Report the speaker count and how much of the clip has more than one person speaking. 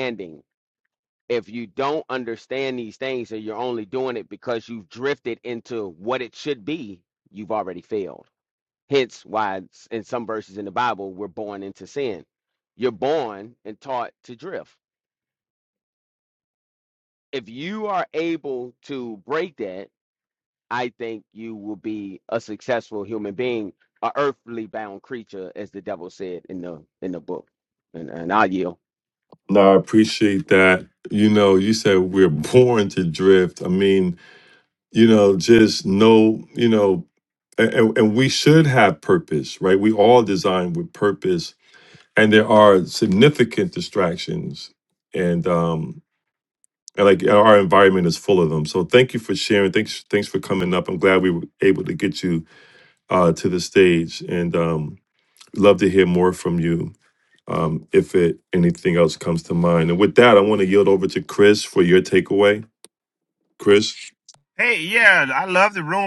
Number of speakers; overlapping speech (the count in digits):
3, no overlap